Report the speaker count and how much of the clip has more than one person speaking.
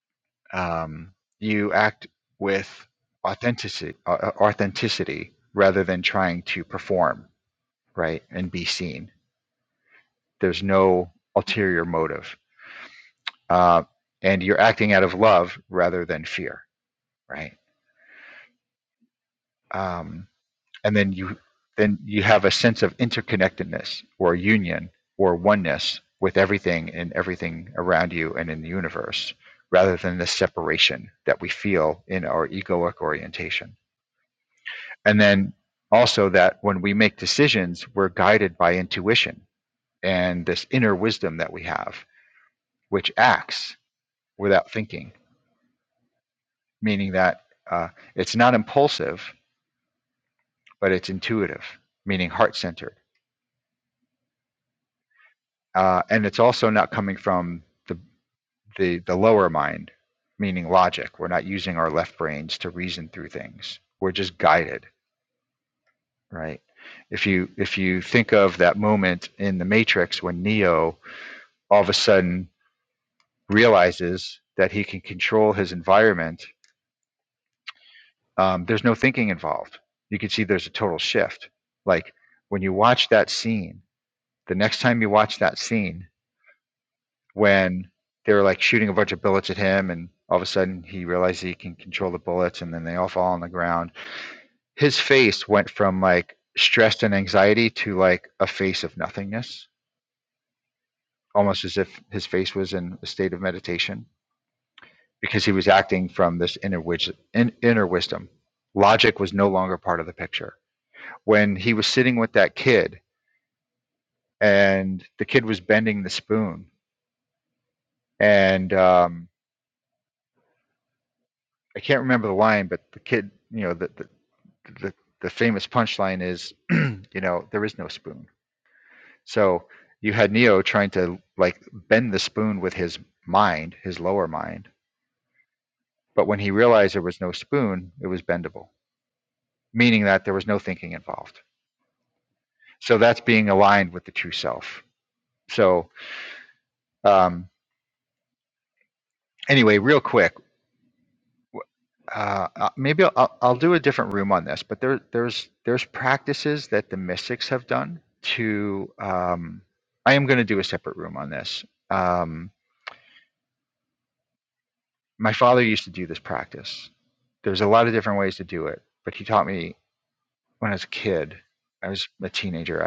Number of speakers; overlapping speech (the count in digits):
1, no overlap